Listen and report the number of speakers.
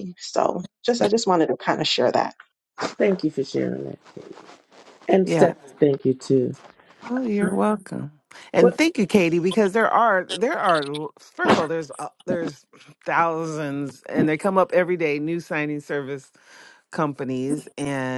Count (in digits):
3